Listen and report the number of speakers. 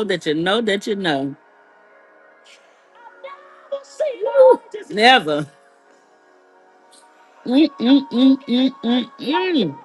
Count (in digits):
1